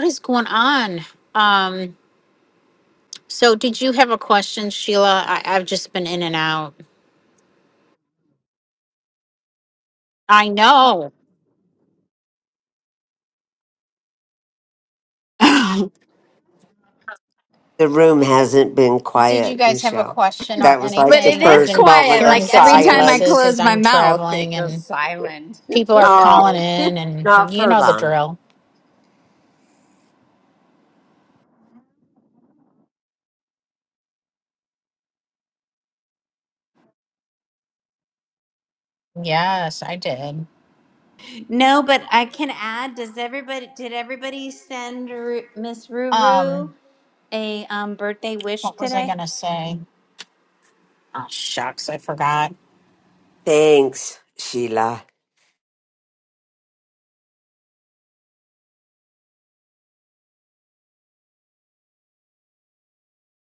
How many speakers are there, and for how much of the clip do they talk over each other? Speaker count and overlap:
three, about 11%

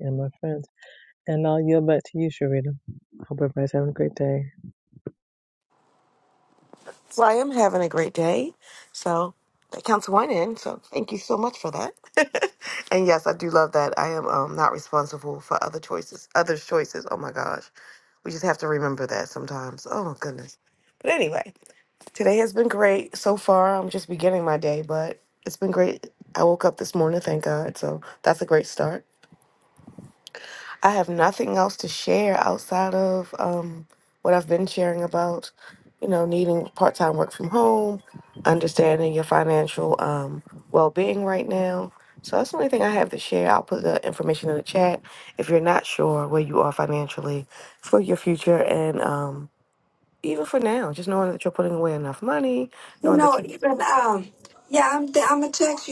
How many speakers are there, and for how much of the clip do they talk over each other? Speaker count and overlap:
three, about 1%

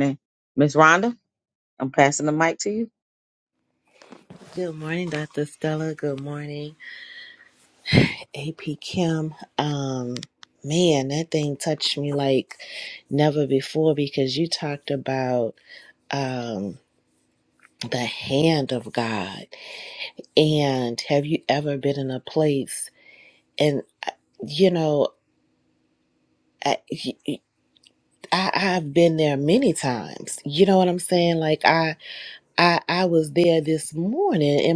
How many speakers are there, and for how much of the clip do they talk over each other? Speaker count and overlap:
two, no overlap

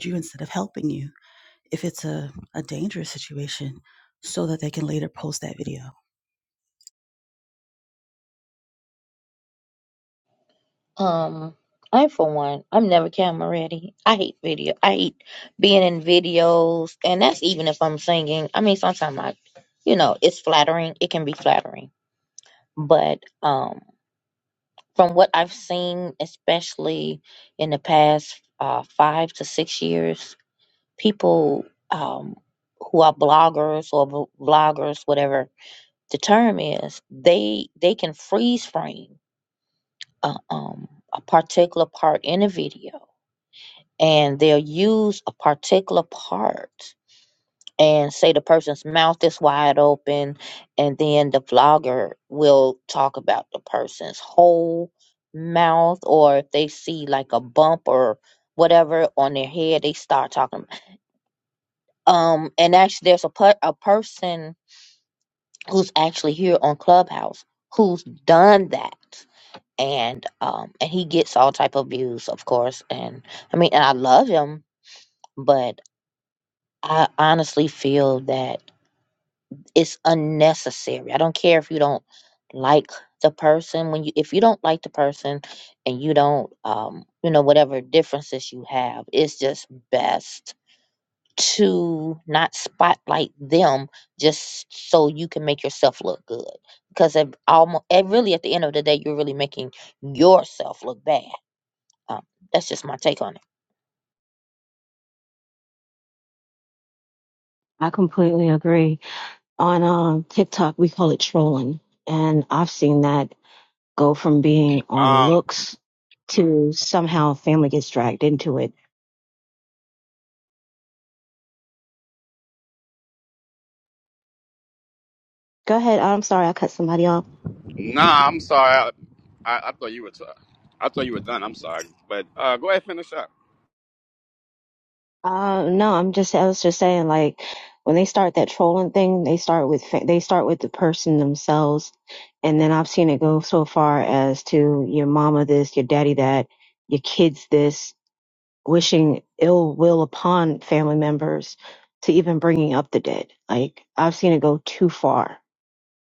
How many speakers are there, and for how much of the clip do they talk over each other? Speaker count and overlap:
four, under 1%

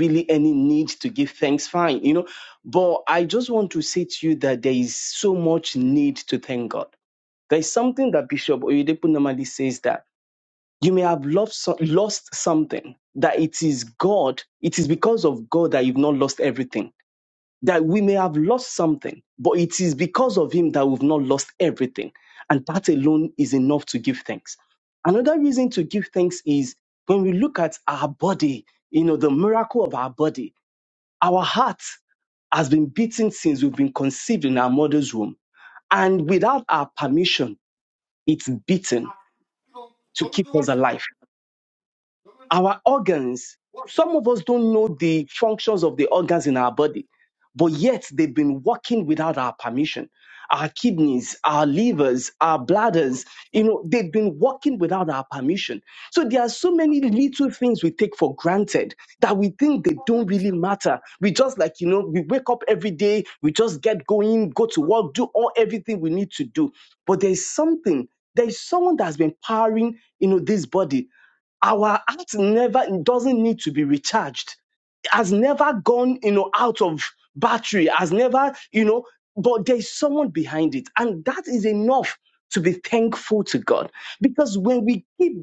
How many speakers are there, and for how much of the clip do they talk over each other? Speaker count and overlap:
one, no overlap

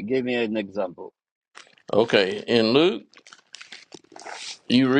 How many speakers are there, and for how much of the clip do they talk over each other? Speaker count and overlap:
two, no overlap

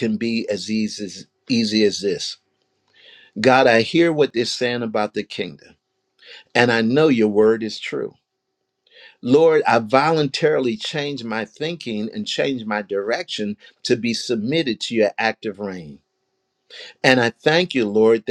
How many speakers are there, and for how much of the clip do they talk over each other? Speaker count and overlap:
one, no overlap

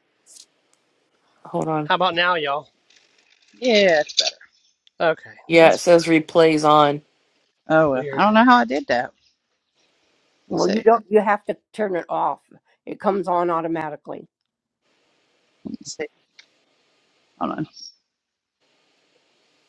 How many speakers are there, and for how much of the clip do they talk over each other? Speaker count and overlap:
four, about 5%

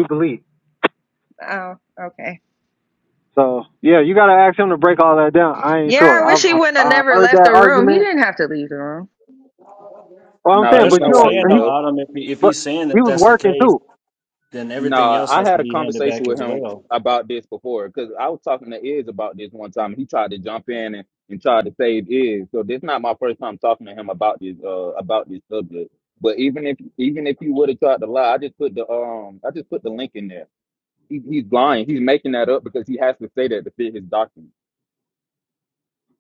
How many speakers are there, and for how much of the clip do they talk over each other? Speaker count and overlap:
four, about 17%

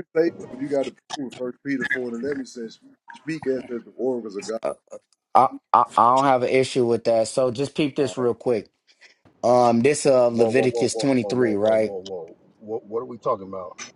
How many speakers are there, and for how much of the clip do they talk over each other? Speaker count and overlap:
three, about 12%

